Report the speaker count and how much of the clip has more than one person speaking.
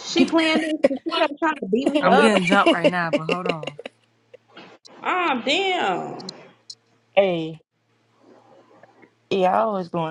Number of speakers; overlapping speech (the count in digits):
3, about 4%